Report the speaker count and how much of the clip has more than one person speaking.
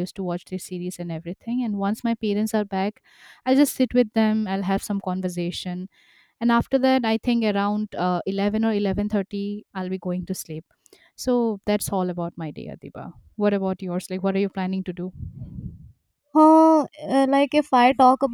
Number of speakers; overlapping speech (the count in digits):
2, no overlap